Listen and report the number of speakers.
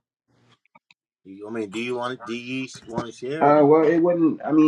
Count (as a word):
two